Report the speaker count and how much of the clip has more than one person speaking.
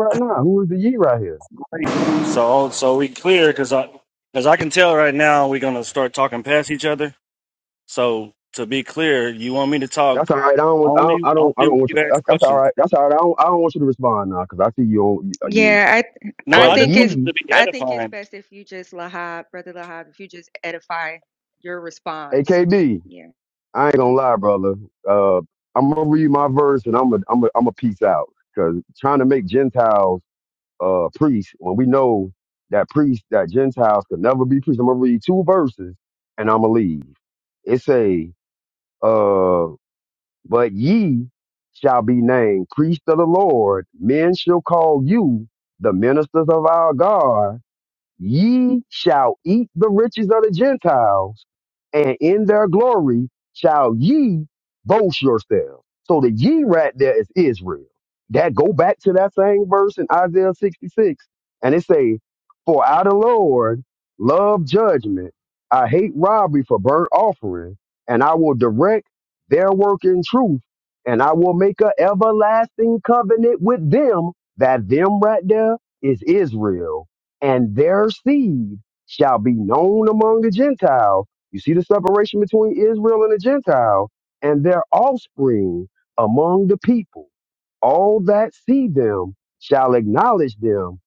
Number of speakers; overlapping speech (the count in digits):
3, about 4%